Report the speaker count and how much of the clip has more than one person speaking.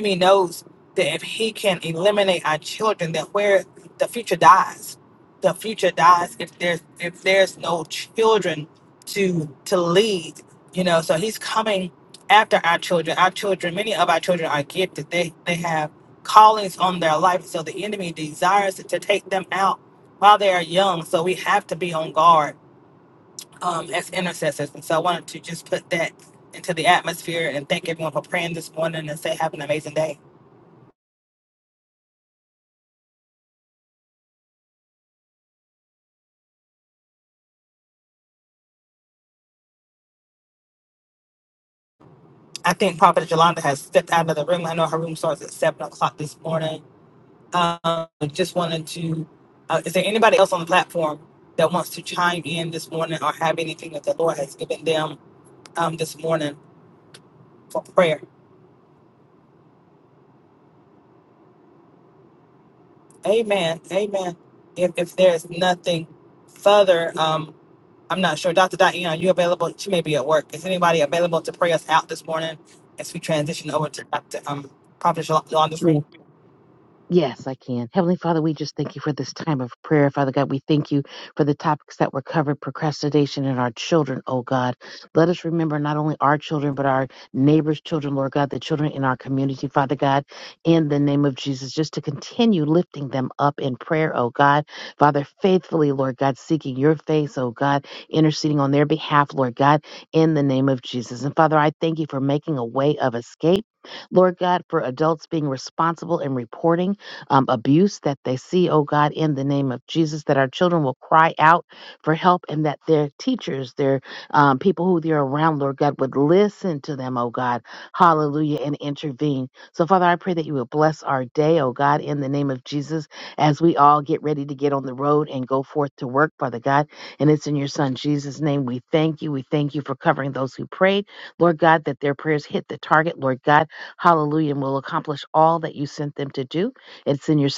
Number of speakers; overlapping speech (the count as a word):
two, under 1%